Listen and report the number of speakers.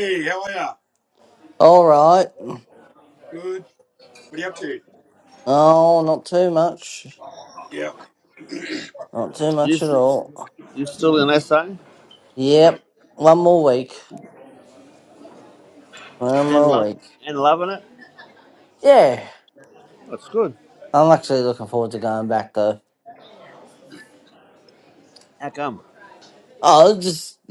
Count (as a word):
three